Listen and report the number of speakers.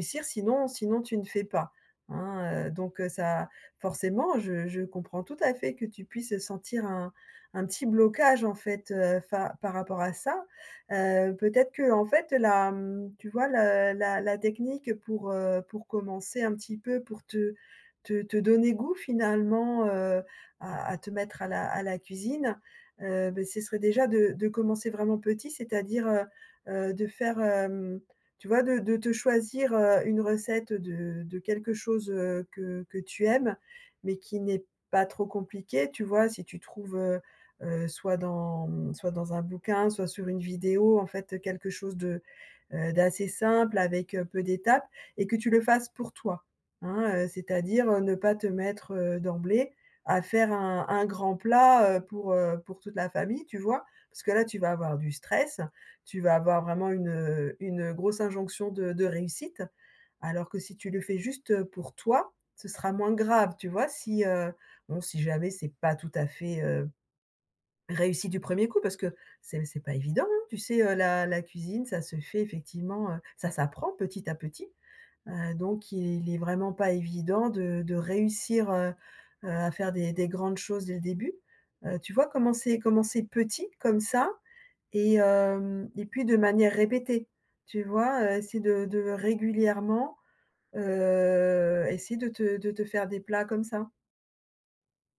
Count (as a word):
one